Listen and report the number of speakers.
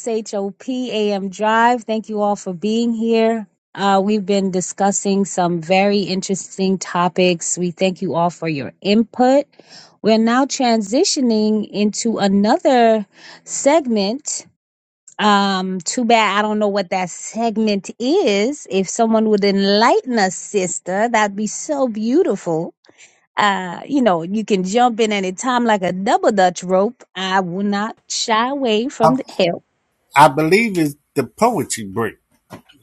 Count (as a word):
two